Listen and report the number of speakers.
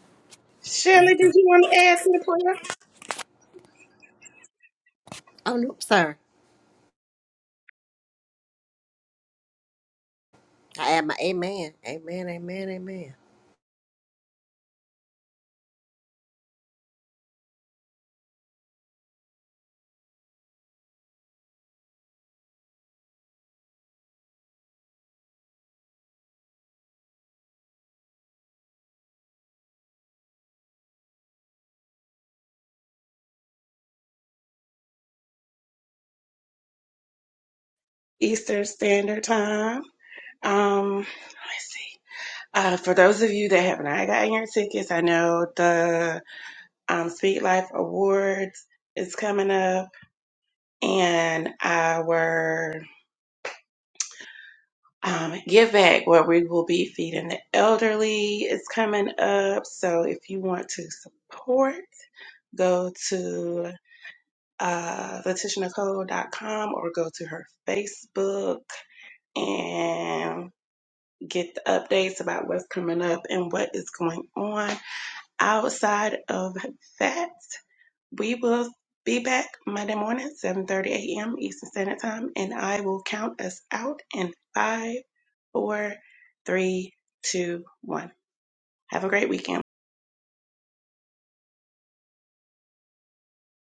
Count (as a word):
two